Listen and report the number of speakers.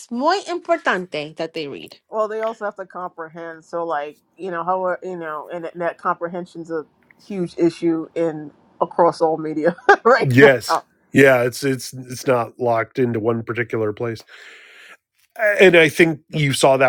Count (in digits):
3